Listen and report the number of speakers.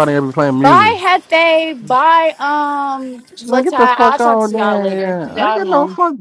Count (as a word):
two